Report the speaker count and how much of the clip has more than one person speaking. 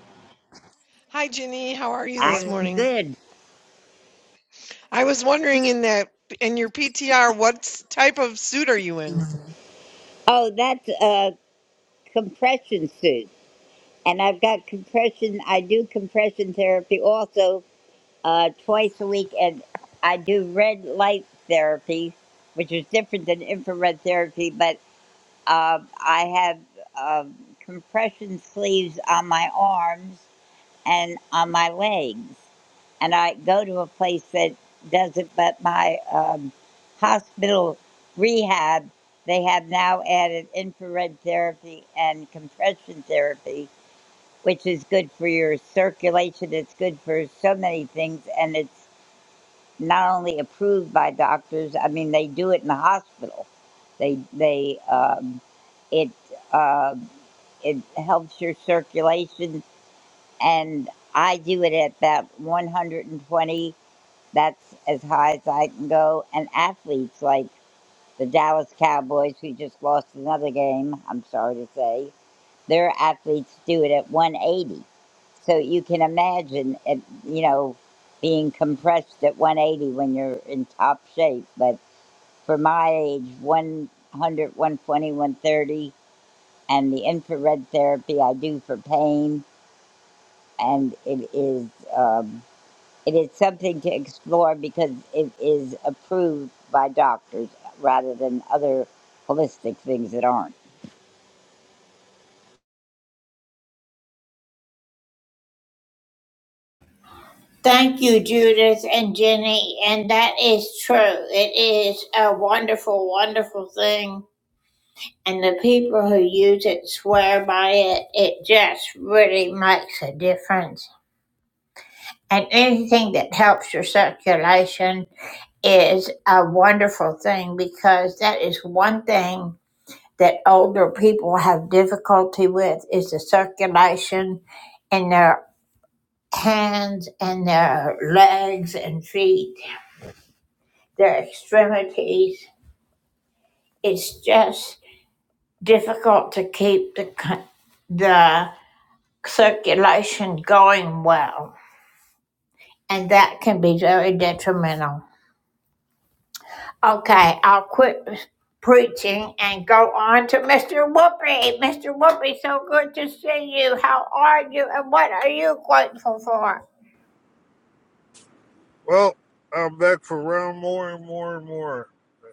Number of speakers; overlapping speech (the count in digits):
4, under 1%